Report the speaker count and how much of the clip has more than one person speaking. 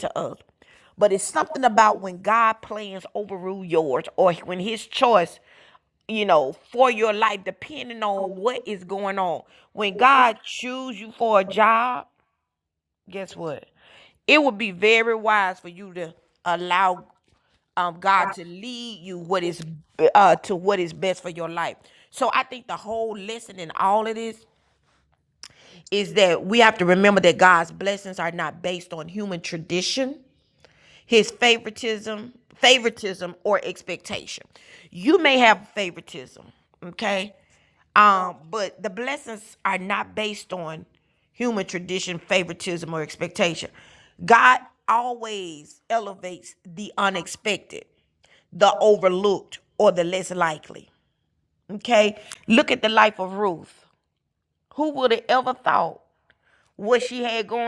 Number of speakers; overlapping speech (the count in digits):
1, no overlap